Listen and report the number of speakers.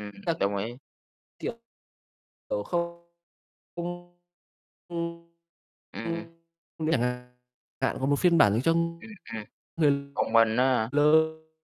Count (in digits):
2